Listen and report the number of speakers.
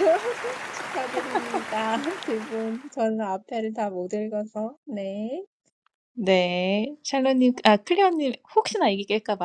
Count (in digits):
2